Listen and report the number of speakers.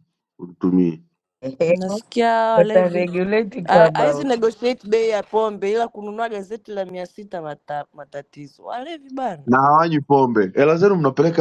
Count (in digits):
3